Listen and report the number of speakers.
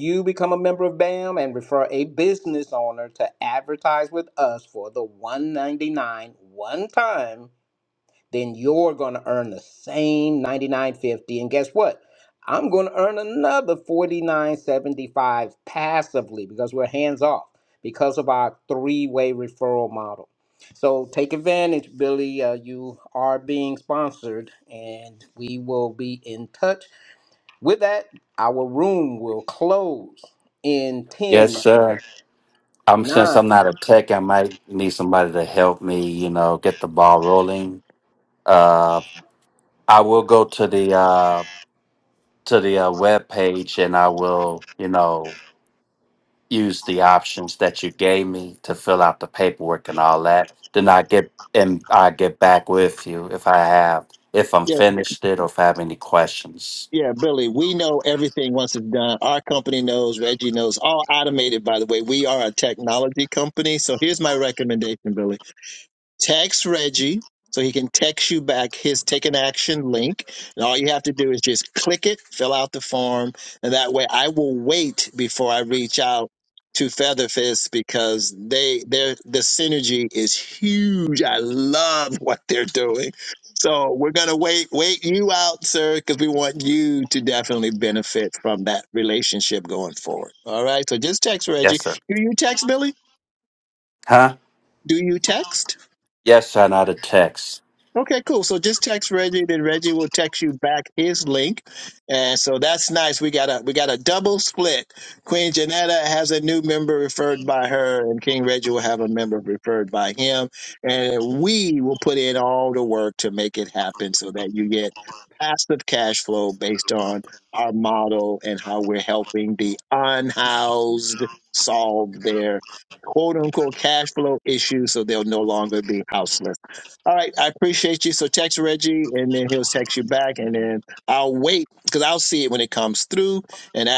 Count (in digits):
3